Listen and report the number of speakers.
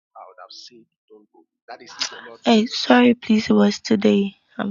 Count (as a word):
two